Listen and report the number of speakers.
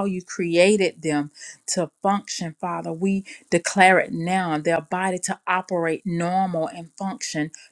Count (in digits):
1